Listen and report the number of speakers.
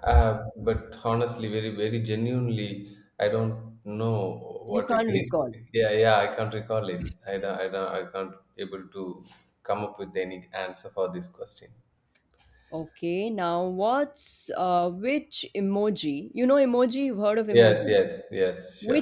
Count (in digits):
2